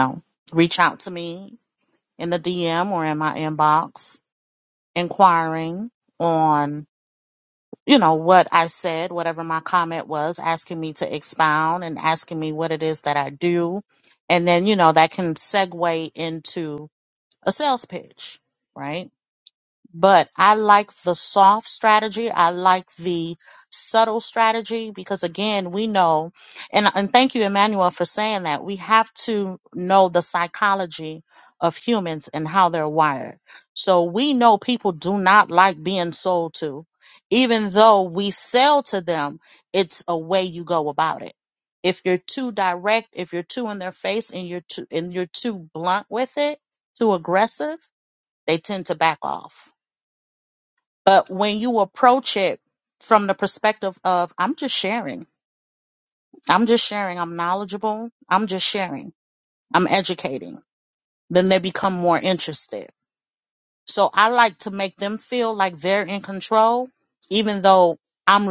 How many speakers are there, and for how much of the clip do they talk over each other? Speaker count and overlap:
1, no overlap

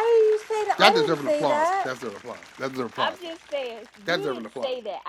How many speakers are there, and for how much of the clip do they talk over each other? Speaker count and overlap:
3, about 41%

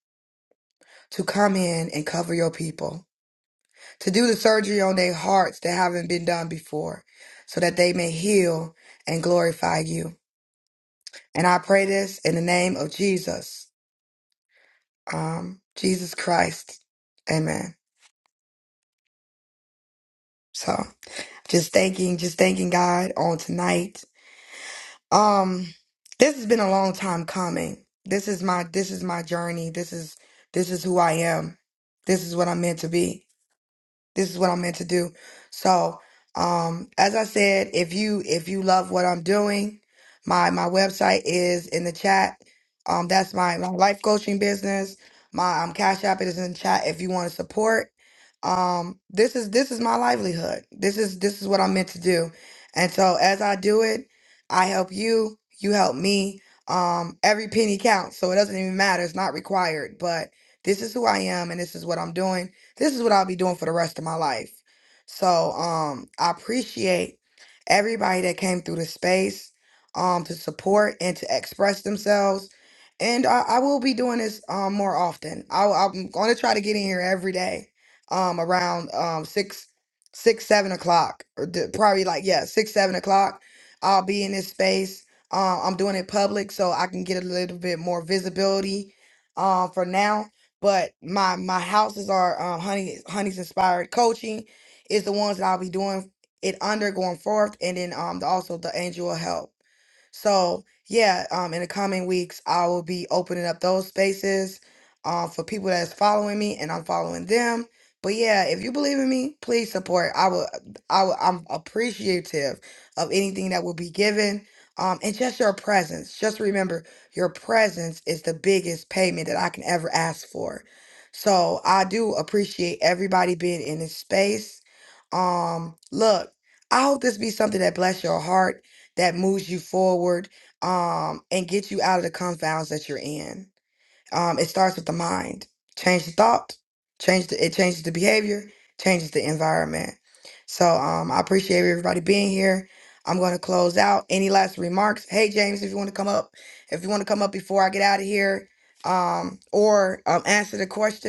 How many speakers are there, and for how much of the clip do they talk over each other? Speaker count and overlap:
1, no overlap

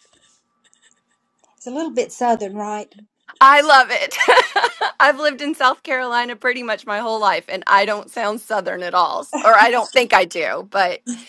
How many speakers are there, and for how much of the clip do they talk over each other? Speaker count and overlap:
2, no overlap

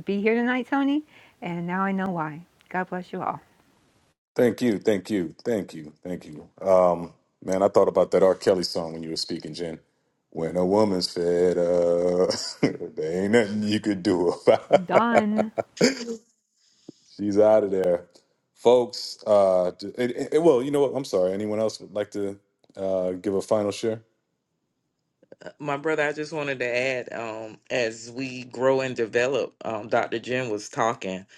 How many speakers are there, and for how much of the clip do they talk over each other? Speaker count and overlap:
3, about 1%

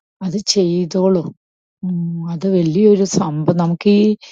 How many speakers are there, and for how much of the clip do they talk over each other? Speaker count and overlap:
1, no overlap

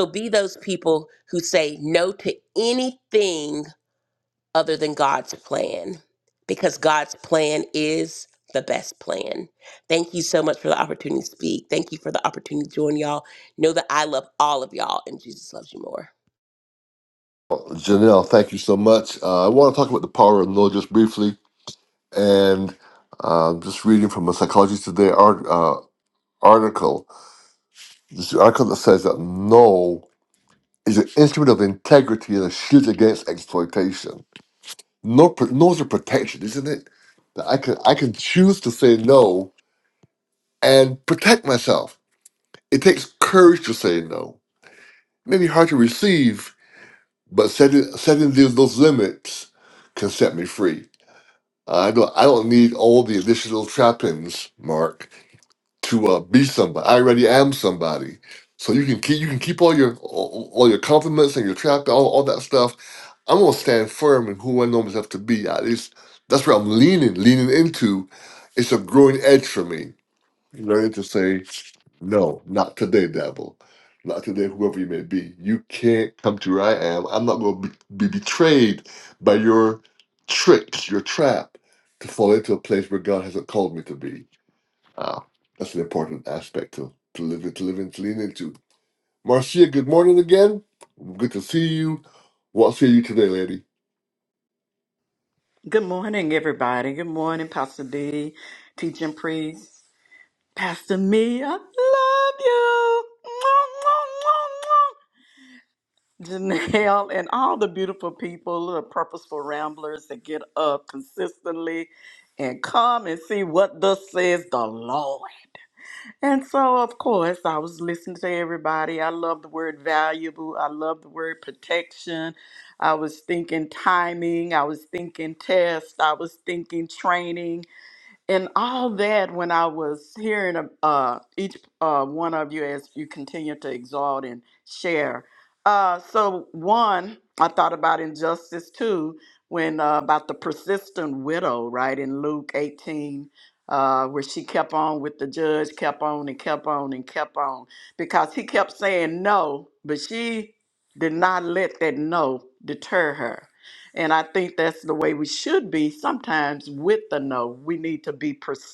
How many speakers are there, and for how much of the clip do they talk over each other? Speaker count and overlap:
3, no overlap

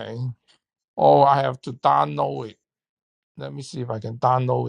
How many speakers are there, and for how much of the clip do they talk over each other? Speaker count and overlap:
1, no overlap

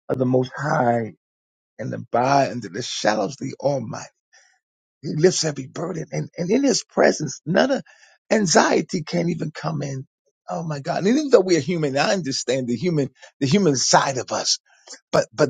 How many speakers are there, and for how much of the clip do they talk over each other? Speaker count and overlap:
1, no overlap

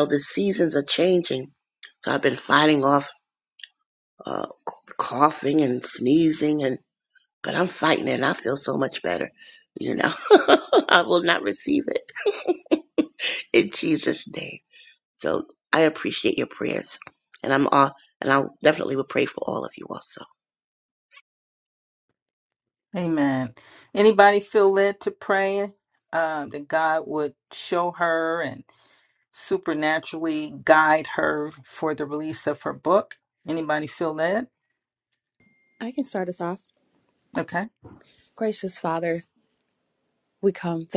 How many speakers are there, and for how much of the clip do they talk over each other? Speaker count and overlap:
3, no overlap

